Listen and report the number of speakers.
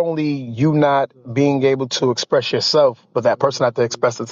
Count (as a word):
one